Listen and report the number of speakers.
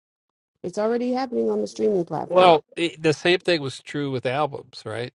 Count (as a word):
two